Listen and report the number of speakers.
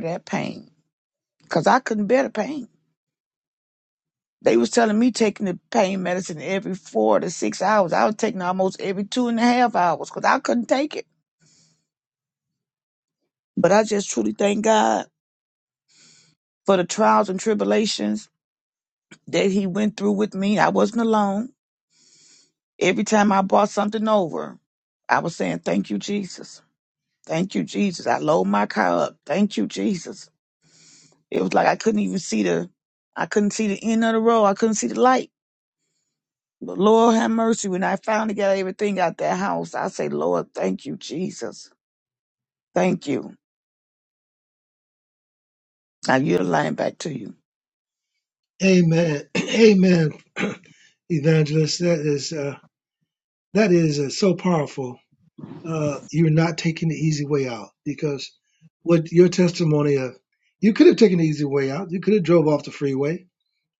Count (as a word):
two